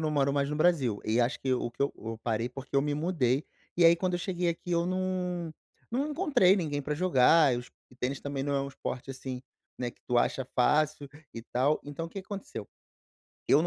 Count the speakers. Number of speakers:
1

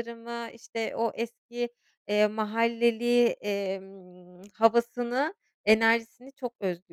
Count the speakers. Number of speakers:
1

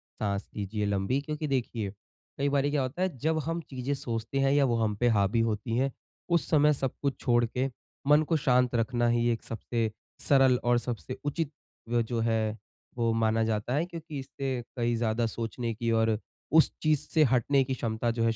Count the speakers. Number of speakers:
1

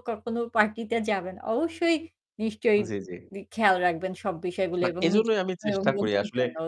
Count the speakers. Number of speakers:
2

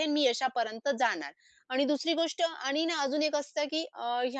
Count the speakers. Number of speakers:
1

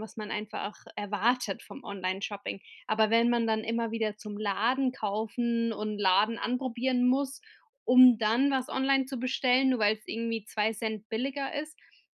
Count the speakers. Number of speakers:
1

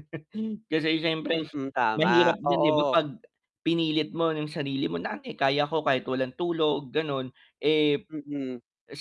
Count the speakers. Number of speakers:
2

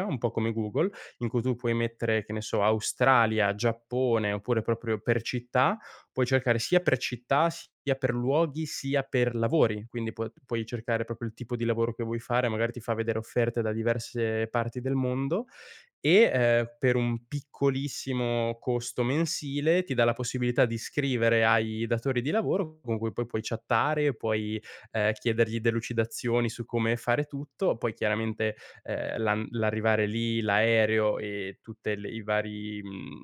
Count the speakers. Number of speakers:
1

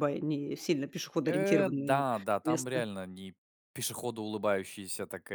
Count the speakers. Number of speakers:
2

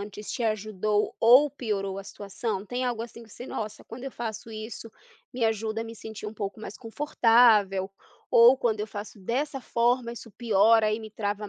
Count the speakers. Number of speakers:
1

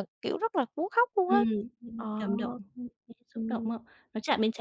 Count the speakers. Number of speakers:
2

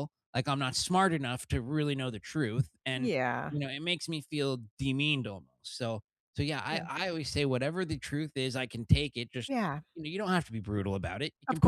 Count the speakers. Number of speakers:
2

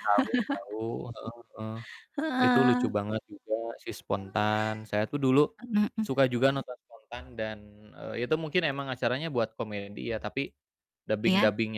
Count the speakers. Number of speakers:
2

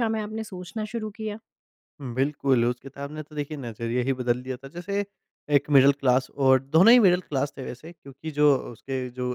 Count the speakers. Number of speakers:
2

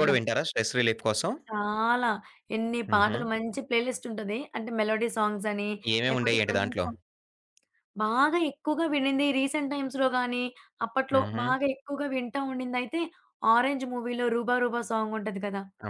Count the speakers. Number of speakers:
2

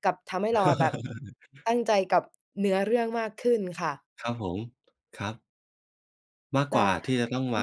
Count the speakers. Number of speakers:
2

